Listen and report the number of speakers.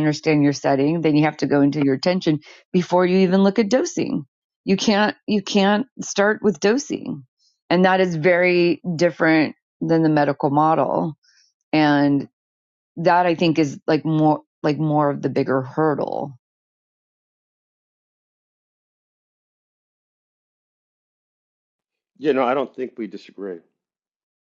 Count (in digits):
2